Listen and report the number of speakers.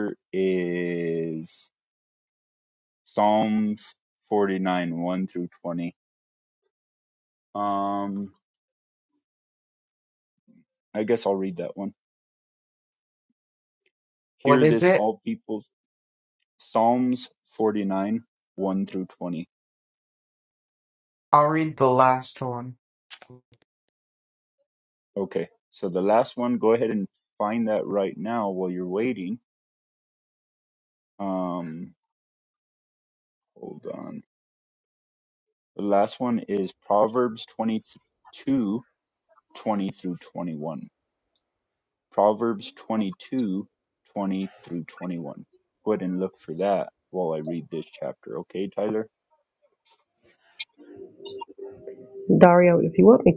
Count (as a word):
three